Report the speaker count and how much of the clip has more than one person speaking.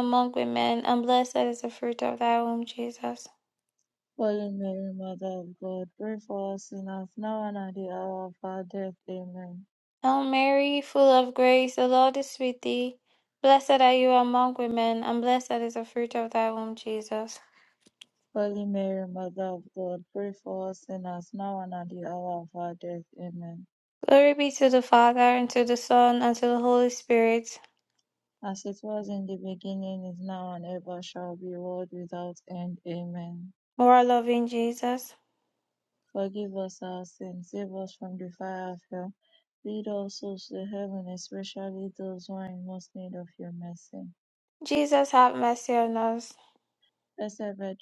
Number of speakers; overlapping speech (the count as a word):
two, no overlap